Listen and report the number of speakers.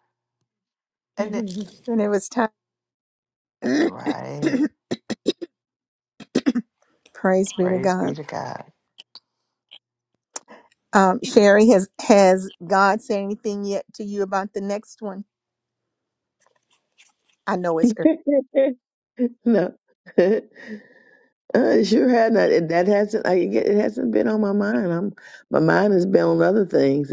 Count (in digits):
3